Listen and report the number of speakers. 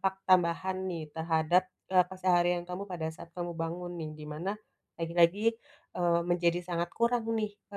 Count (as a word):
one